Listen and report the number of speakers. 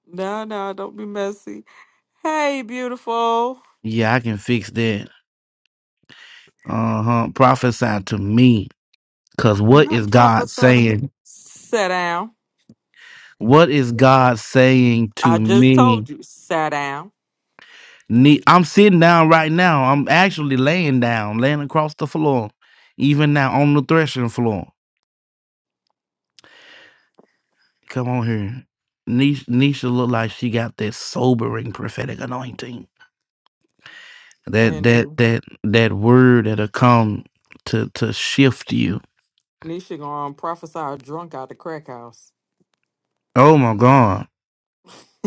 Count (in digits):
2